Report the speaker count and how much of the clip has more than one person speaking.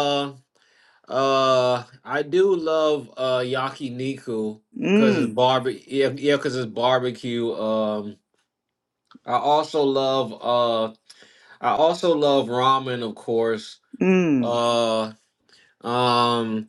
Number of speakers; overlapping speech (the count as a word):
two, about 4%